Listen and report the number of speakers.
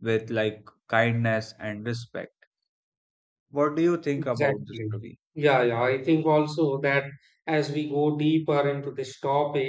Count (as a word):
two